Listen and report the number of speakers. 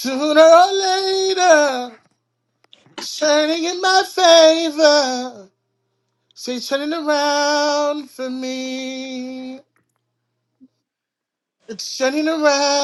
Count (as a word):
one